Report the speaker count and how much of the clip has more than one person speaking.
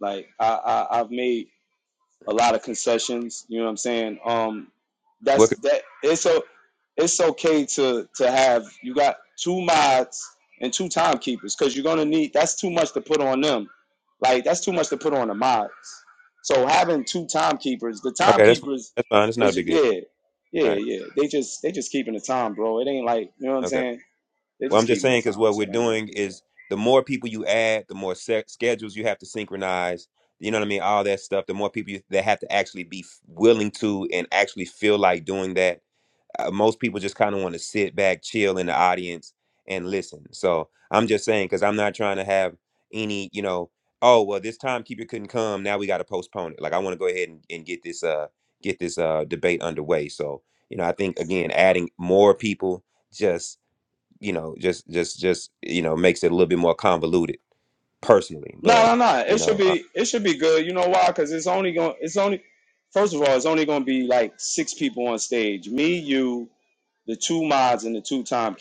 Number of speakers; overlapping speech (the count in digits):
2, about 6%